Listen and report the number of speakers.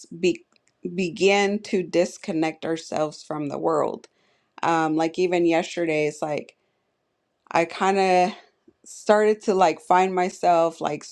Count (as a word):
one